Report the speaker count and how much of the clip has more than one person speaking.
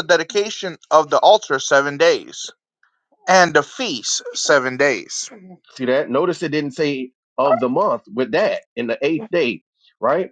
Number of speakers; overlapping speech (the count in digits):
2, no overlap